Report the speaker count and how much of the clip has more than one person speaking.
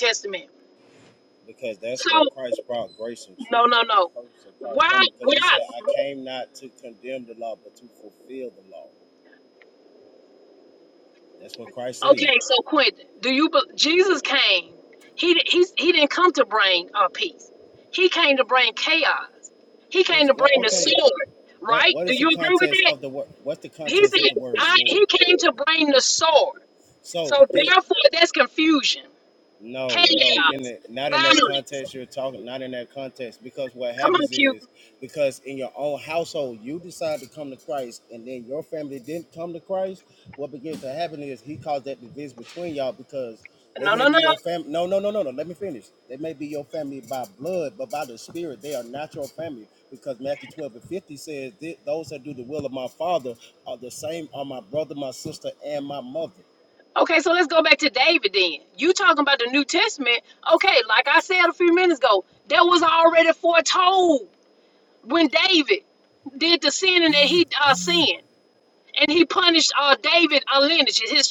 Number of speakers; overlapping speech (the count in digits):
2, about 11%